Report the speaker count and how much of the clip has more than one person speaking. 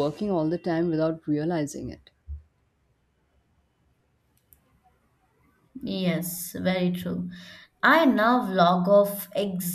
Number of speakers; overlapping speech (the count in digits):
2, no overlap